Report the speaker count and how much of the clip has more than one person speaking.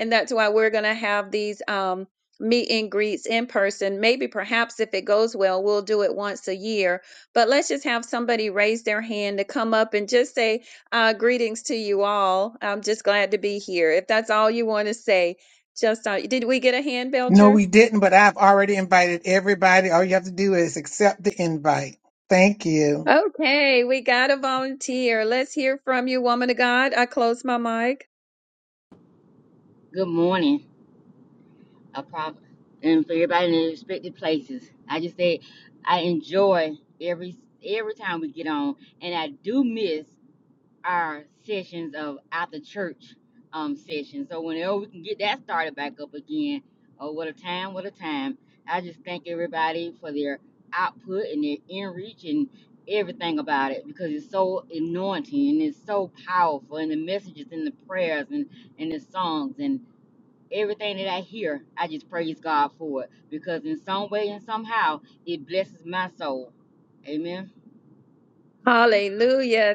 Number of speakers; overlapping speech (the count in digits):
3, under 1%